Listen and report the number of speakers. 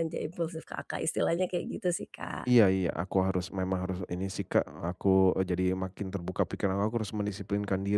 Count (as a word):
two